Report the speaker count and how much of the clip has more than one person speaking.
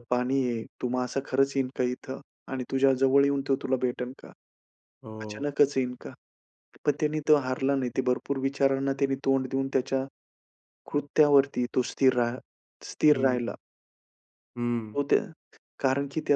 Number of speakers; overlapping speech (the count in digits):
2, about 3%